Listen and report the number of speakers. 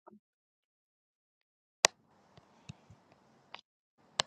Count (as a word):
zero